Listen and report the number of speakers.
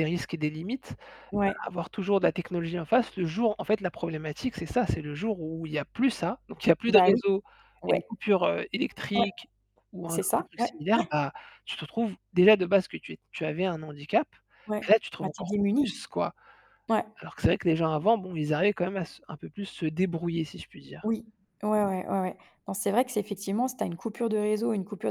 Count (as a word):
two